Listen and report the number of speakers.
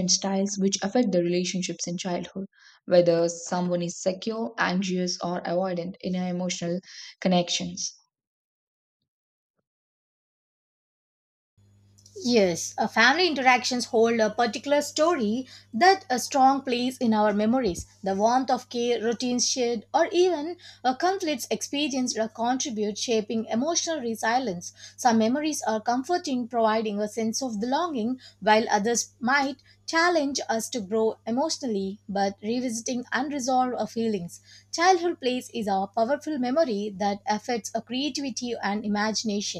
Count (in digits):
2